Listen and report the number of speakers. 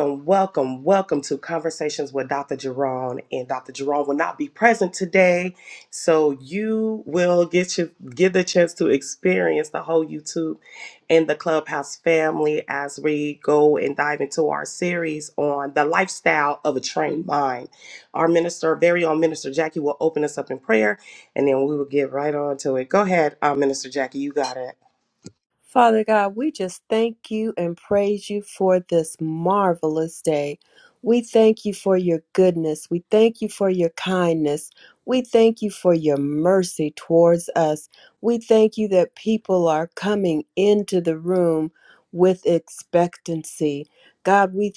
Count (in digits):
2